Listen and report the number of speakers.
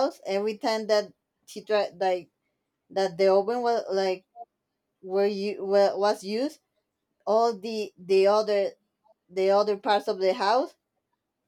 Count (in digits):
1